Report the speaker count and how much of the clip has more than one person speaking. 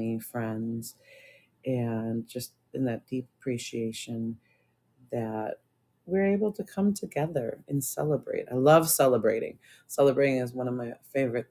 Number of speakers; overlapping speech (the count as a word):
one, no overlap